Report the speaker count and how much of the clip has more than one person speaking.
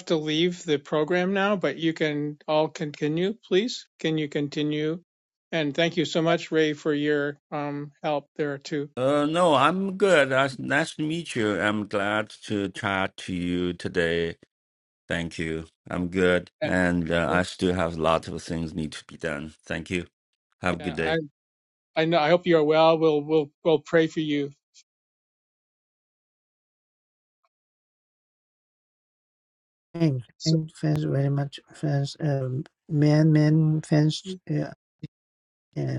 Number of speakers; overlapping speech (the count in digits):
3, about 2%